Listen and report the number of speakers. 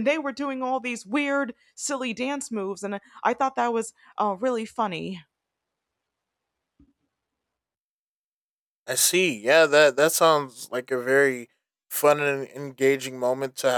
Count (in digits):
2